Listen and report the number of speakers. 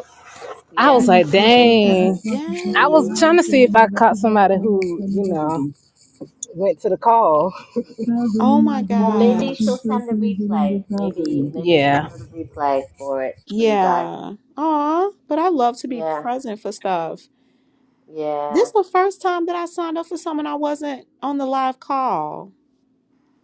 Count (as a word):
three